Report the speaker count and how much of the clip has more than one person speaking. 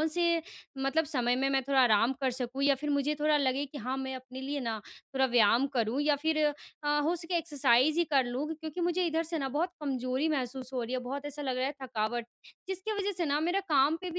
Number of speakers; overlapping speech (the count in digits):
1, no overlap